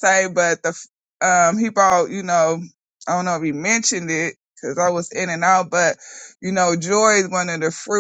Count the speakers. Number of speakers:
1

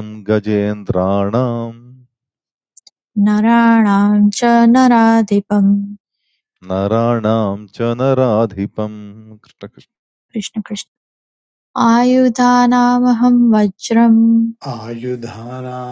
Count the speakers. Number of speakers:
3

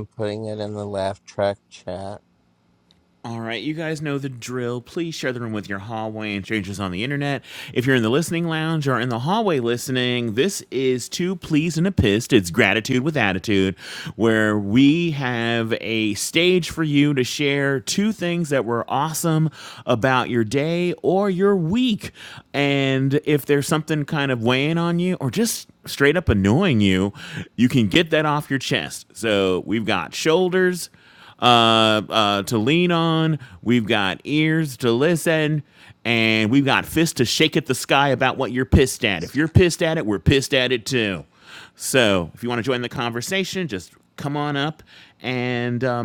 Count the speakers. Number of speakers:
2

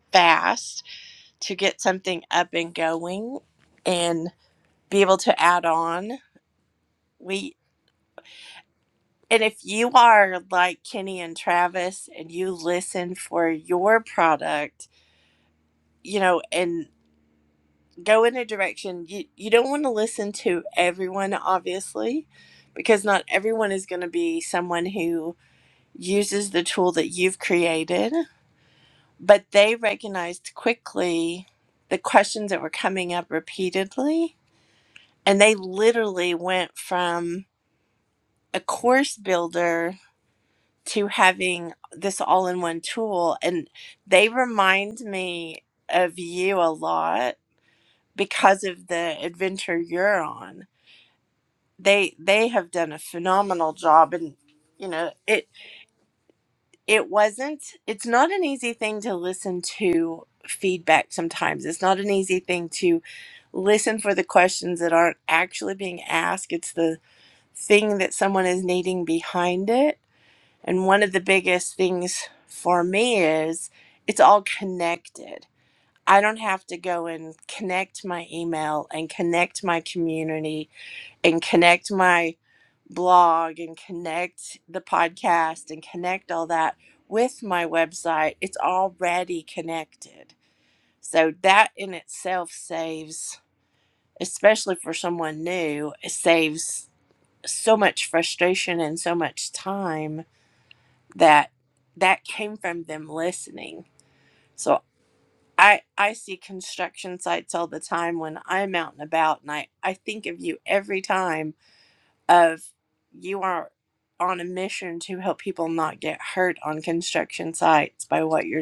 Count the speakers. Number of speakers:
1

